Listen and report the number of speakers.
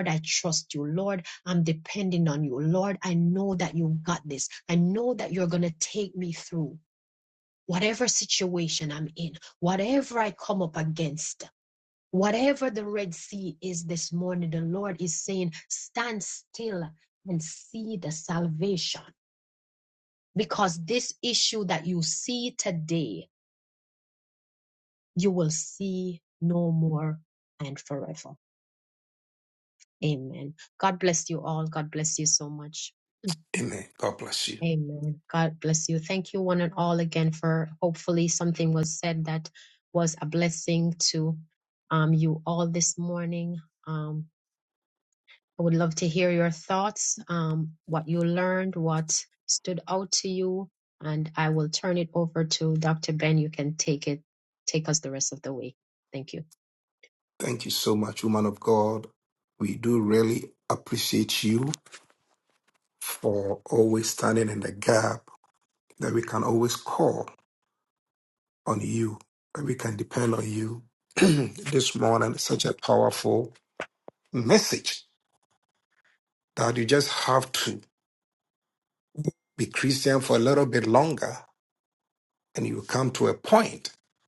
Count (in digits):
2